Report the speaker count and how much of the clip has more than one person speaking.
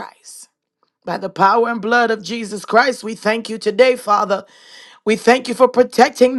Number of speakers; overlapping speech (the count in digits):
1, no overlap